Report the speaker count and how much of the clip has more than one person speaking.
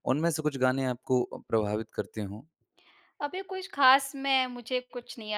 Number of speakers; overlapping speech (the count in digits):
2, no overlap